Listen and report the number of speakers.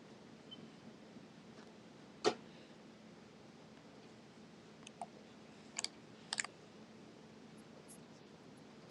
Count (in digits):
0